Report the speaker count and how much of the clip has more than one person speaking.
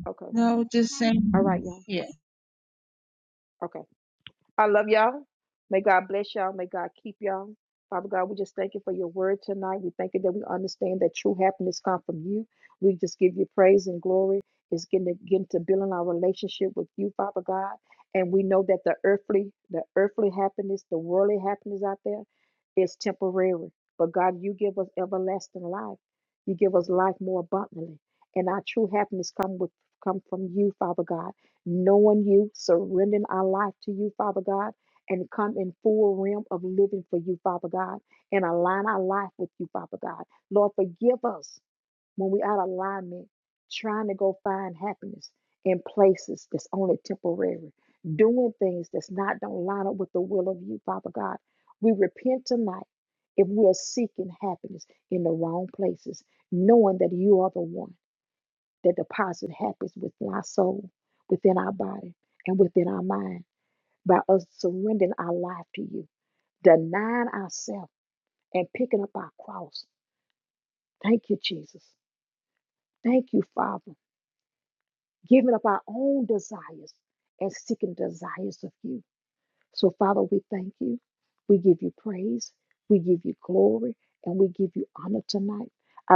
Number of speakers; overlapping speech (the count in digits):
2, under 1%